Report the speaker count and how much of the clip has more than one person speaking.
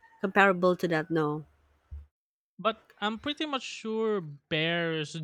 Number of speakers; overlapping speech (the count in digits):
2, no overlap